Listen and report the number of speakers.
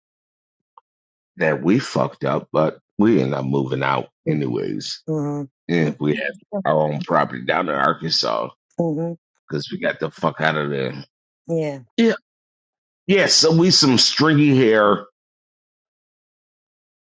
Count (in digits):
2